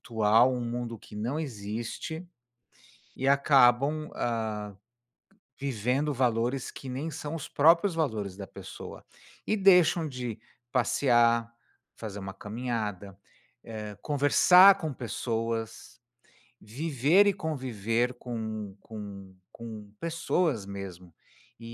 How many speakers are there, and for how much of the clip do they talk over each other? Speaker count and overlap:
1, no overlap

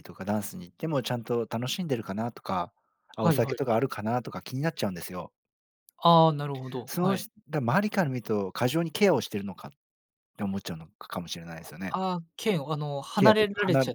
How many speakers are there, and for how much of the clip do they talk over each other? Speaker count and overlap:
2, about 12%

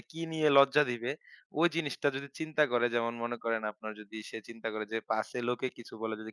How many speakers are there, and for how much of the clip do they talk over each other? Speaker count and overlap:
1, no overlap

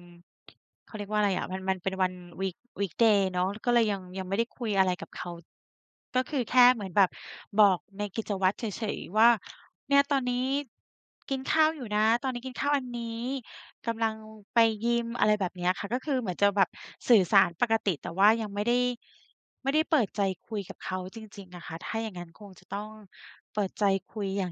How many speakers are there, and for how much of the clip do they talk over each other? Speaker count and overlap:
1, no overlap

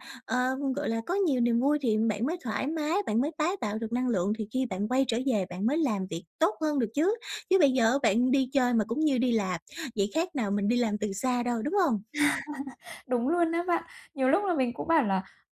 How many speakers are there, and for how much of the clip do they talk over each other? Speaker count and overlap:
2, no overlap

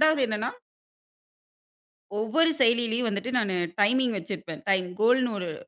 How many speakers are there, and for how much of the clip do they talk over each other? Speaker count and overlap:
1, no overlap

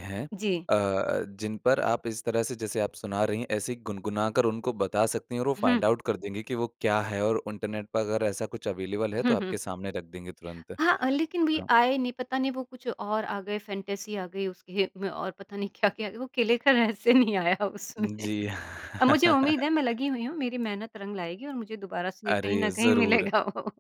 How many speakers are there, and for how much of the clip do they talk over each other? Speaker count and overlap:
2, about 7%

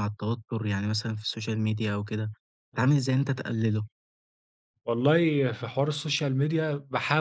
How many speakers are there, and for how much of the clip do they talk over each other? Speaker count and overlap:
2, under 1%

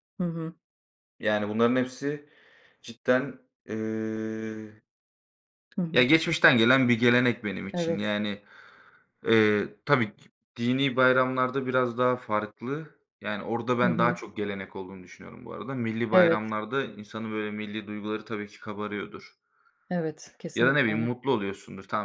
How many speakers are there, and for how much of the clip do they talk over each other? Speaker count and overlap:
2, about 7%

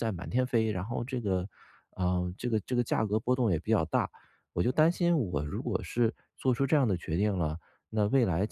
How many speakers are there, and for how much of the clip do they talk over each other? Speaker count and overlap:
1, no overlap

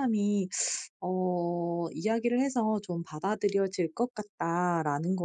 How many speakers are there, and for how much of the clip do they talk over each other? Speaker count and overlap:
1, no overlap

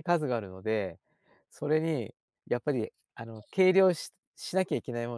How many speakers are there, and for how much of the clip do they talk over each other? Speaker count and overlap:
1, no overlap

